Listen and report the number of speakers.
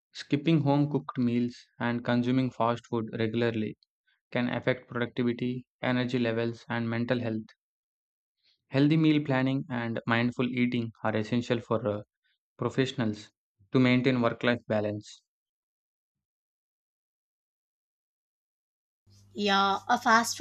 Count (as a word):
two